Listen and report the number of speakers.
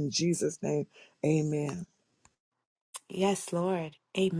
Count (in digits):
2